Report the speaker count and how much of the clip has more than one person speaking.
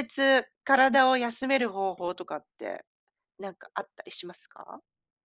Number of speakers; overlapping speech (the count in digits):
1, no overlap